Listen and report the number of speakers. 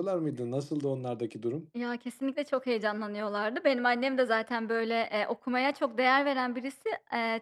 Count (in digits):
2